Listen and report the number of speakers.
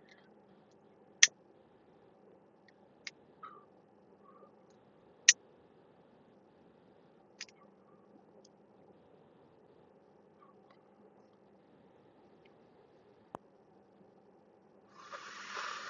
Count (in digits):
0